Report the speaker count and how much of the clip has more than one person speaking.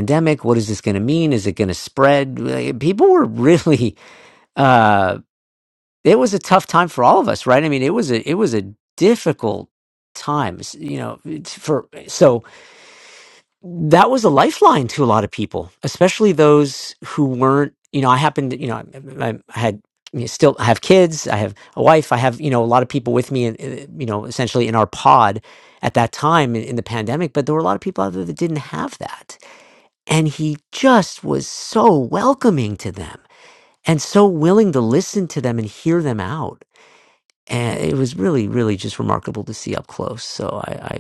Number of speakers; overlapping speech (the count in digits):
1, no overlap